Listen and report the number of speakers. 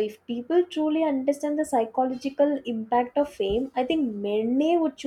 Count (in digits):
1